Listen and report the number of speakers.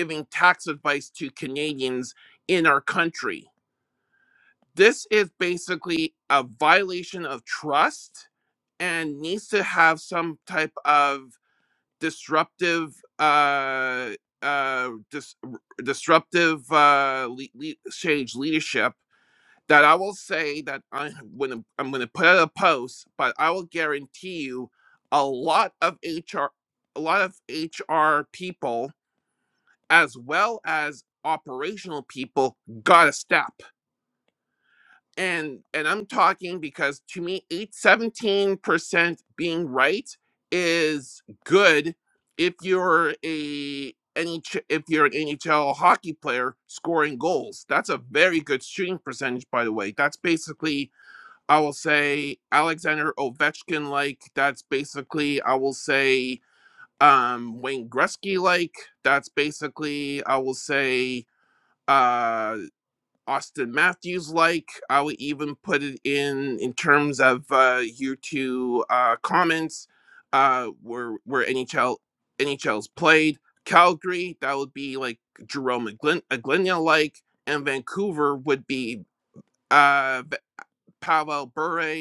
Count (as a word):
one